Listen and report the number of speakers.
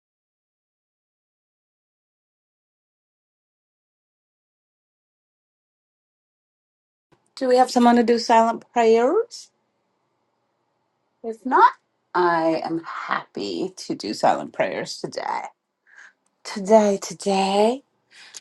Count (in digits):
1